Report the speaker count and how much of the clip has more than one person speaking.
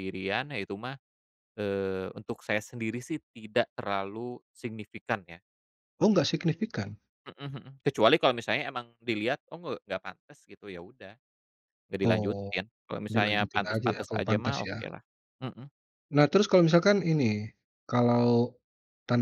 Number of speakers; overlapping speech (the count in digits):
2, about 12%